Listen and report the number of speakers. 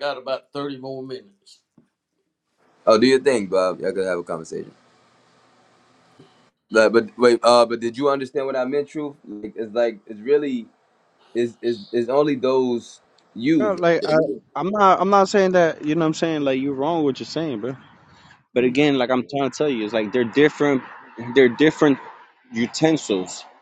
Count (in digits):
3